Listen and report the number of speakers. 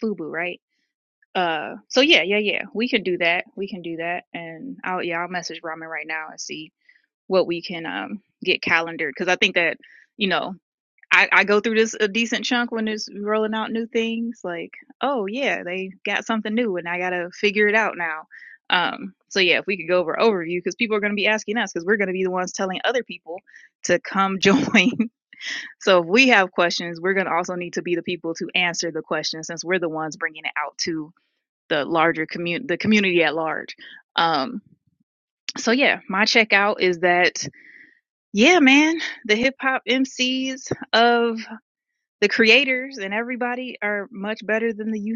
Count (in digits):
1